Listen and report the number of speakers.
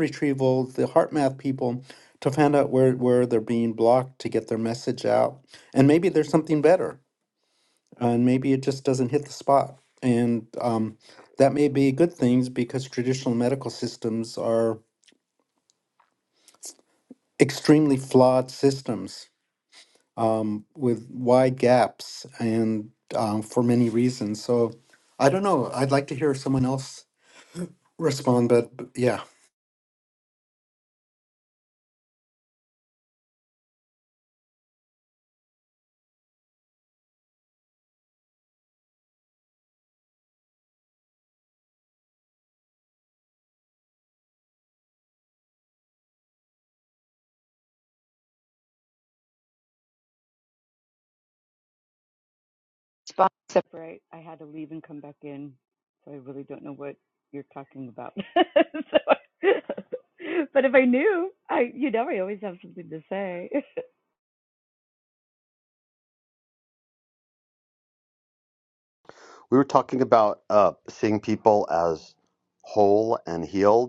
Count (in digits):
3